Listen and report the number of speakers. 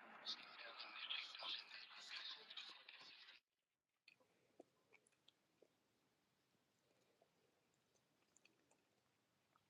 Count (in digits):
0